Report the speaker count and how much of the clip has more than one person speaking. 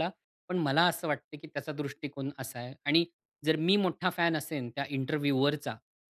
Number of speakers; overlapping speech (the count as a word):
one, no overlap